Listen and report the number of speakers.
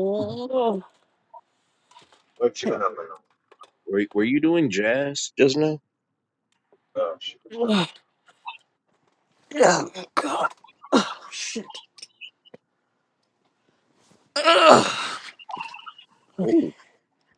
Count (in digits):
3